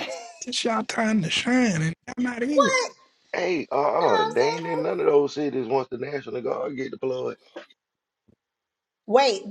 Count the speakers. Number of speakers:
three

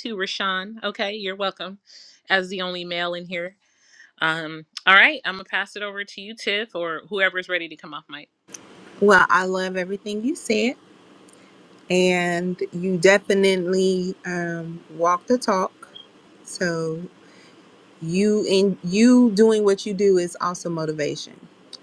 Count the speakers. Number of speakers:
two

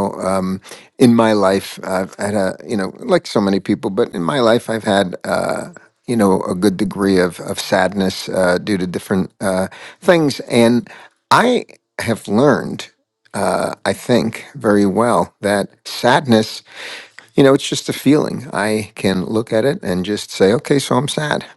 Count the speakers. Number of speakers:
one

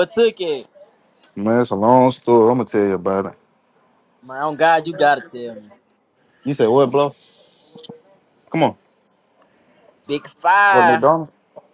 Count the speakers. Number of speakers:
two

